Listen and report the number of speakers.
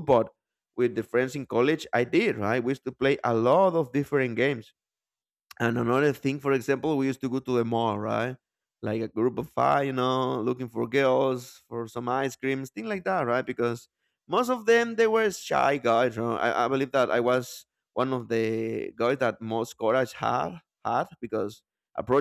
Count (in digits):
1